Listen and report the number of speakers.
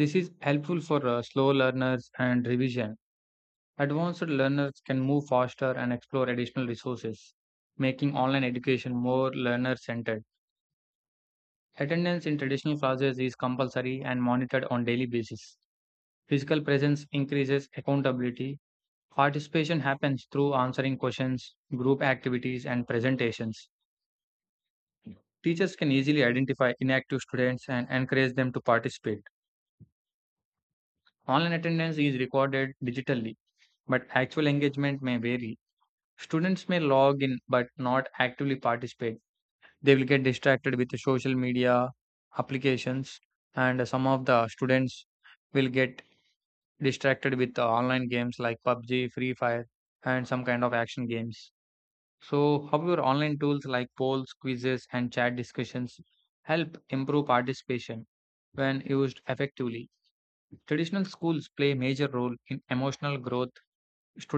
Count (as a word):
one